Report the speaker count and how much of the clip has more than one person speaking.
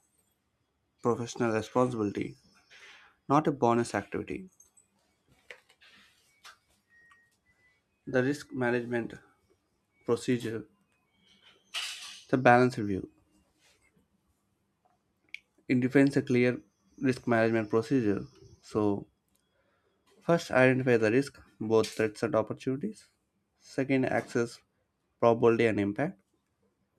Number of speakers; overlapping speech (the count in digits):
1, no overlap